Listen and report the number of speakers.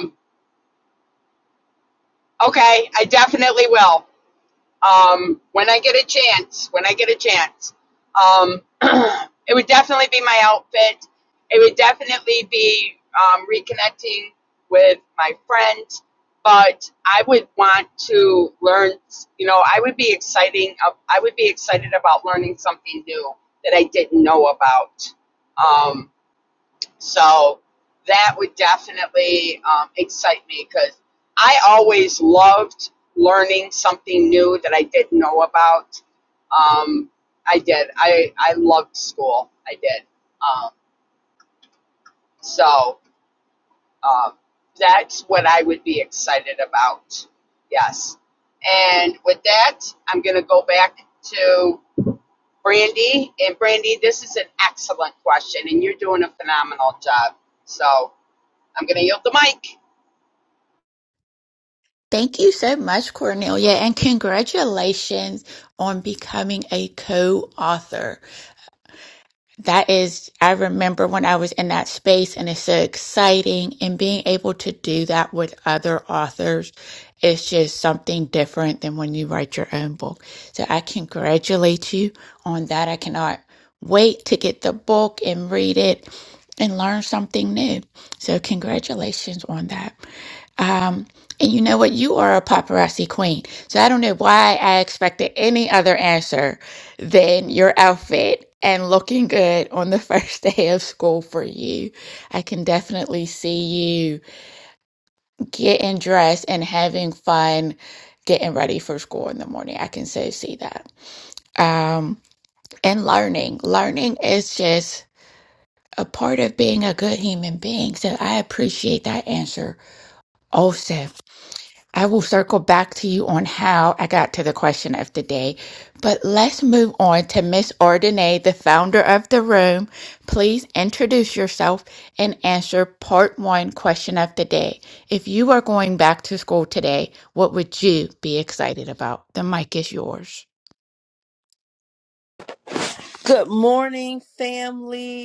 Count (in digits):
3